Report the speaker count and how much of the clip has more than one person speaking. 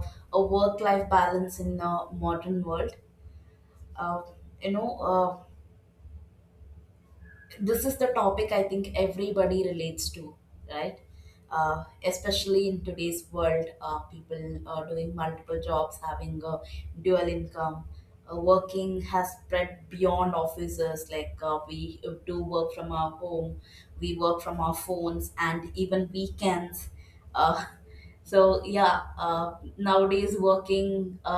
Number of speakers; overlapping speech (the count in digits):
1, no overlap